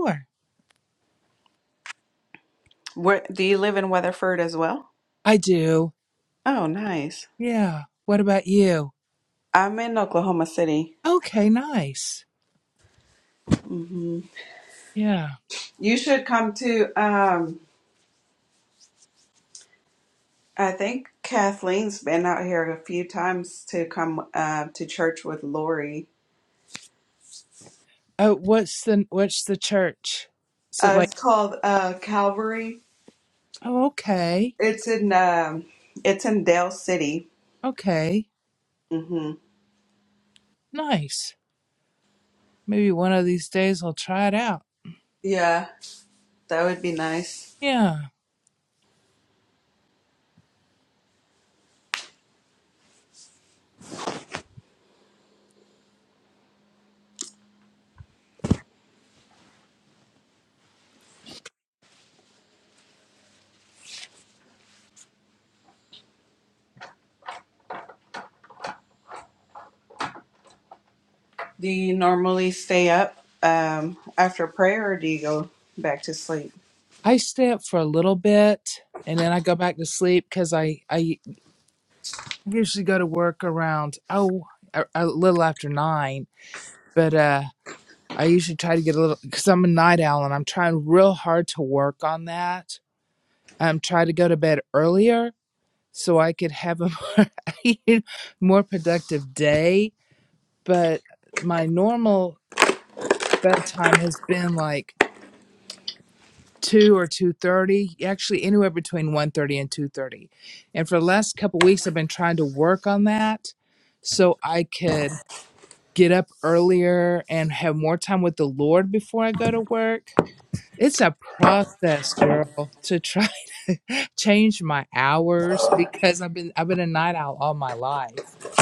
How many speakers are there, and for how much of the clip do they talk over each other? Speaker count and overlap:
2, under 1%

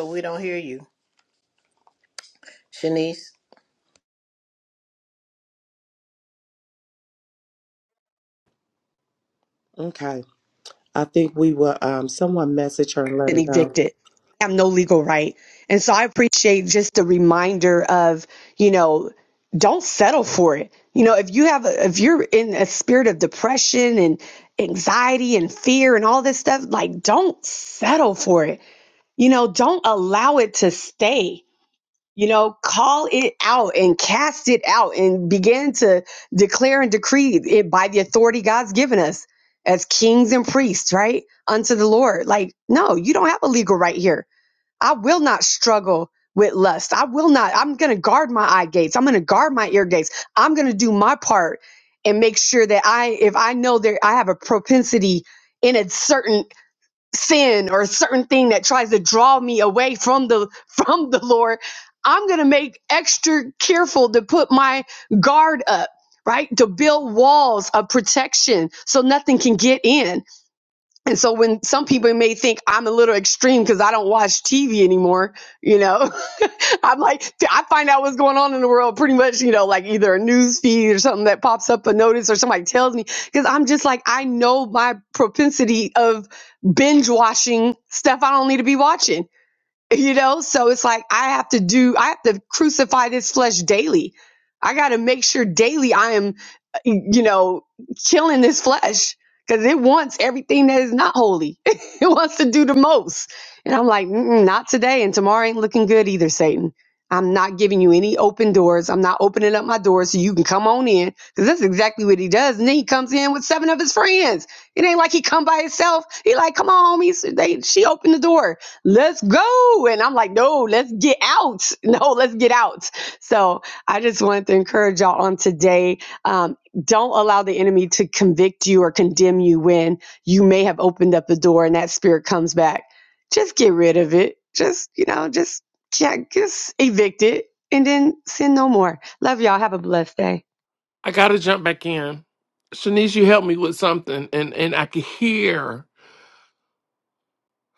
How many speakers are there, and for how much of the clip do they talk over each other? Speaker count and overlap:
4, under 1%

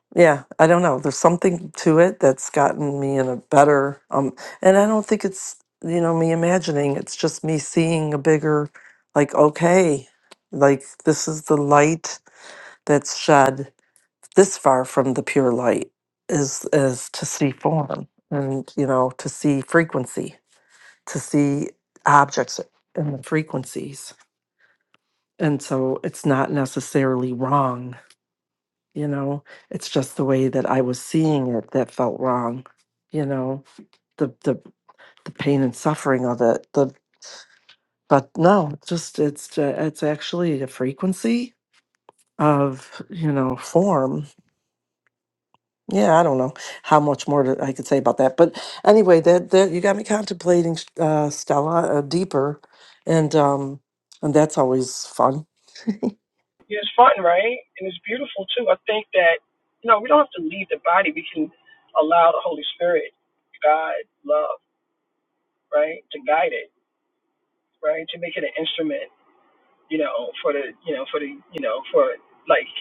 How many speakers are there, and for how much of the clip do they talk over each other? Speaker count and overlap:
2, no overlap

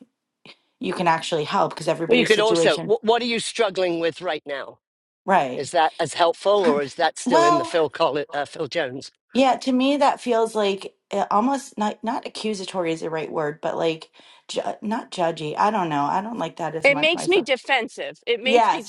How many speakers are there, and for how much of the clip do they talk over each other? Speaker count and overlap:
3, about 13%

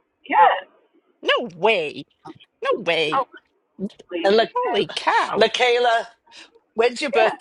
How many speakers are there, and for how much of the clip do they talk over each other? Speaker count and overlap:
3, about 16%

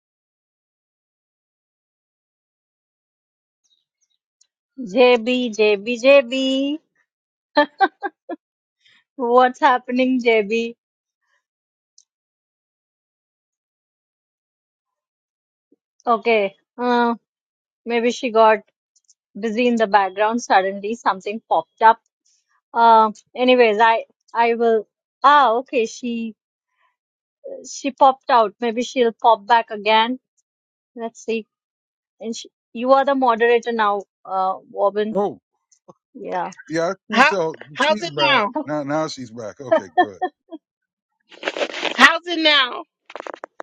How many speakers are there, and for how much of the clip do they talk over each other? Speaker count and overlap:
3, about 2%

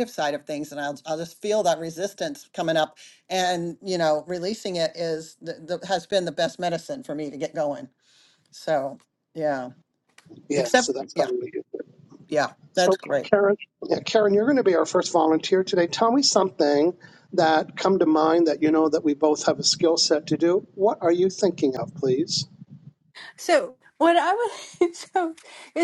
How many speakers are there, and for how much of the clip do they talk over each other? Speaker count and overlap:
3, about 5%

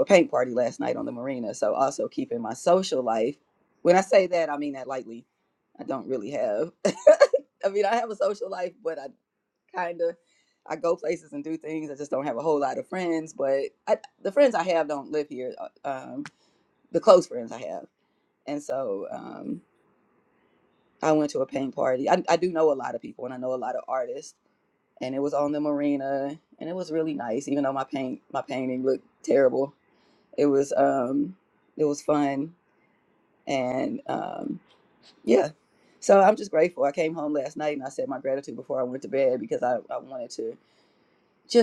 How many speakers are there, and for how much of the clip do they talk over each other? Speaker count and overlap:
1, no overlap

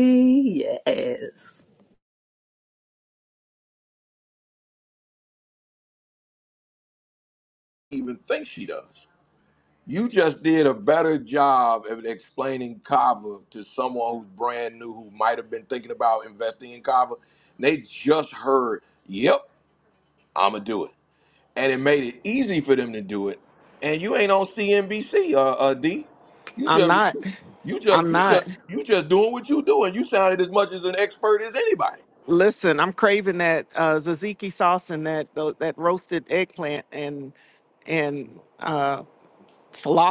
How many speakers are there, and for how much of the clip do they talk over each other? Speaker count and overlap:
3, about 2%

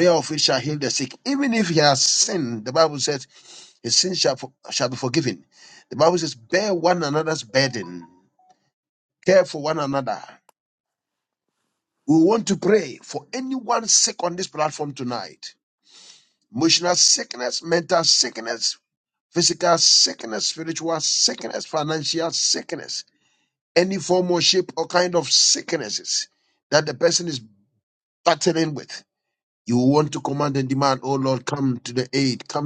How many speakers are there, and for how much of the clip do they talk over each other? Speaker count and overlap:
1, no overlap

